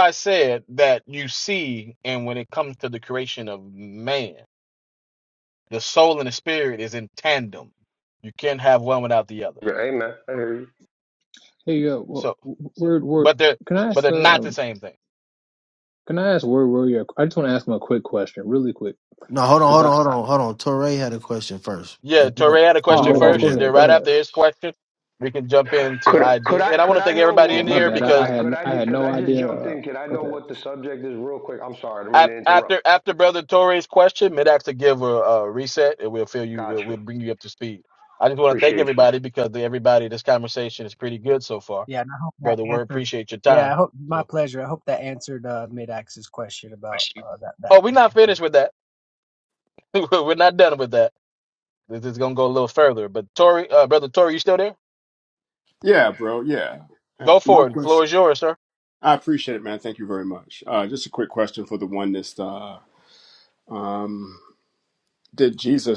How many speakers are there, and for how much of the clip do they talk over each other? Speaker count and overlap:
six, about 16%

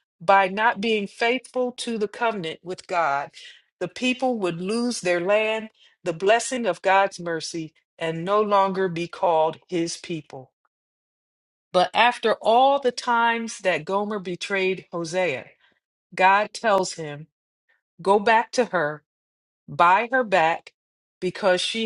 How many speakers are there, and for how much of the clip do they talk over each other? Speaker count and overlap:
one, no overlap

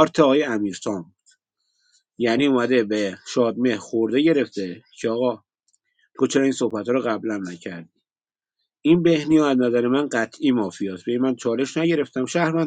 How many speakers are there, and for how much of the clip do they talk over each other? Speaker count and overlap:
one, no overlap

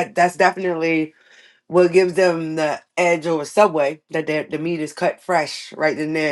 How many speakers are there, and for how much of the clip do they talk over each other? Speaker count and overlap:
one, no overlap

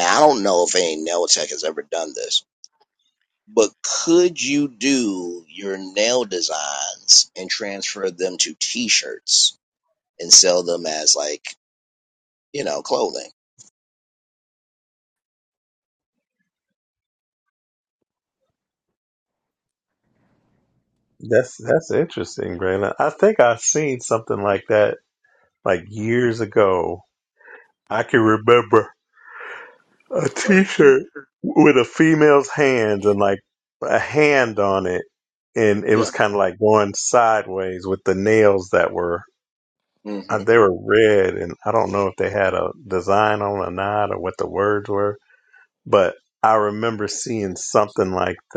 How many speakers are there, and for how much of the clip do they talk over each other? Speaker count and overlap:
two, under 1%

